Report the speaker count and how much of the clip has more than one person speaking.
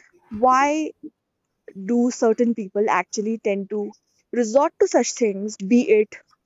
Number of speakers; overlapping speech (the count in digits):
1, no overlap